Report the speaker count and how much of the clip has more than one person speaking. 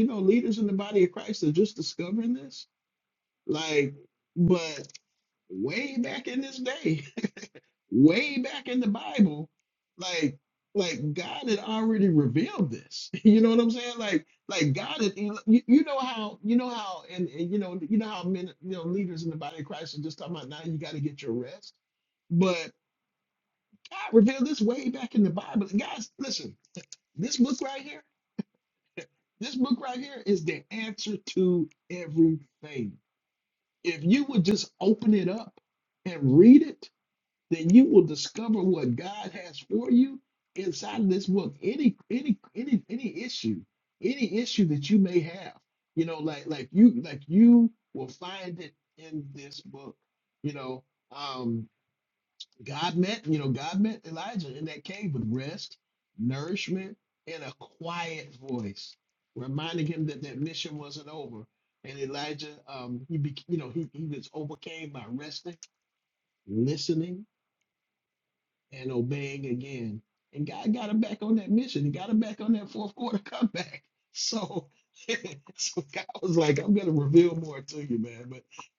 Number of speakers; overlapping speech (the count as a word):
one, no overlap